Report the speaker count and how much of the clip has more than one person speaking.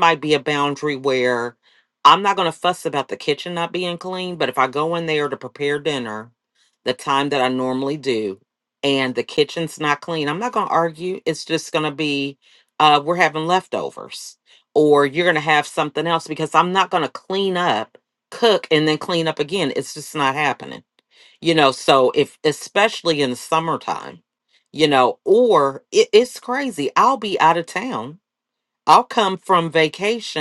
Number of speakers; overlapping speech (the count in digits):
1, no overlap